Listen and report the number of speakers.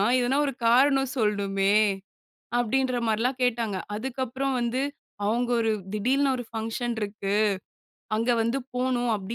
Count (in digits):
1